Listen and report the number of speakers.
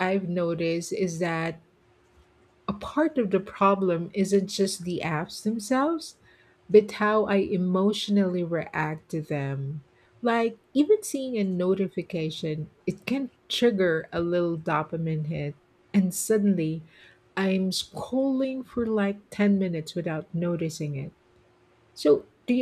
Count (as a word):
one